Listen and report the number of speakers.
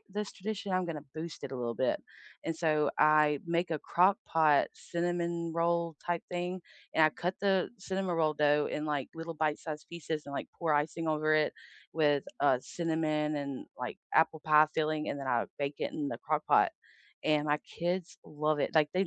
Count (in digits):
1